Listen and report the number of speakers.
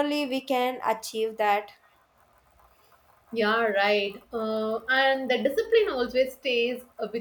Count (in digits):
2